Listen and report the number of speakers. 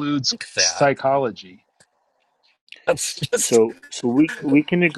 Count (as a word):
three